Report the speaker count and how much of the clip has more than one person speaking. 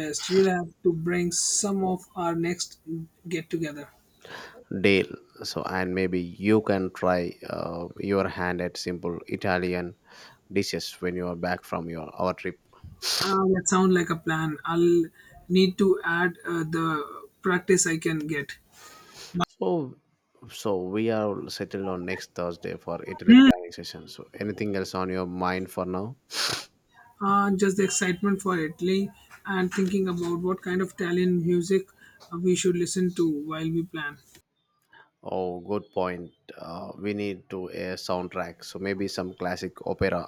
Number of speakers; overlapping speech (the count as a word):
two, about 1%